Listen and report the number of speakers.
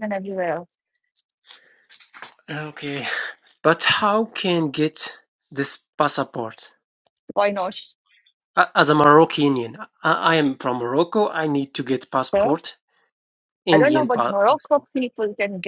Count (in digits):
2